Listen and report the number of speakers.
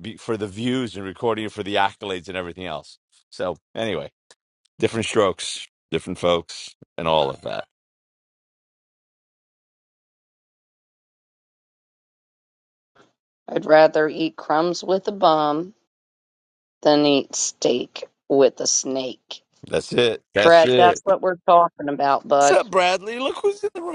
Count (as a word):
two